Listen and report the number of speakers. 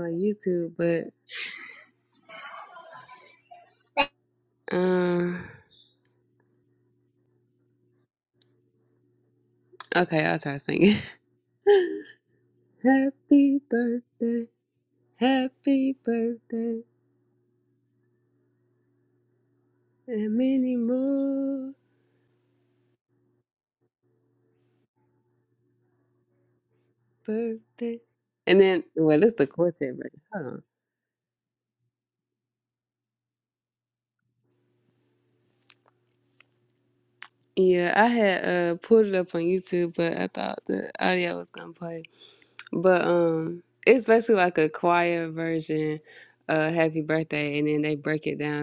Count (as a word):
one